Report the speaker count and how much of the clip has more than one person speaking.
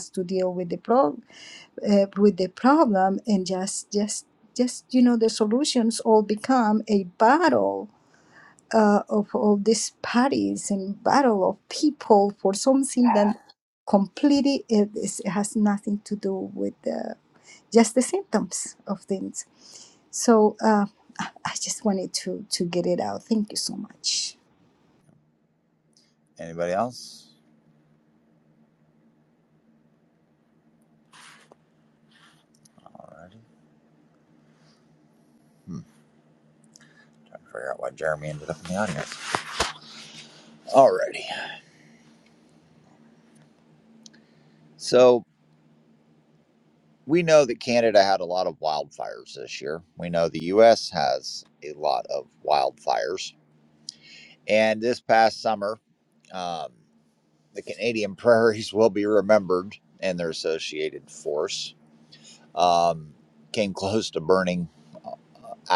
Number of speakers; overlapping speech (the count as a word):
two, no overlap